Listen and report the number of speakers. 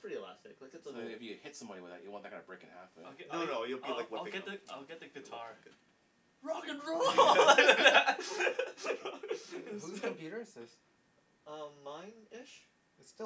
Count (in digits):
4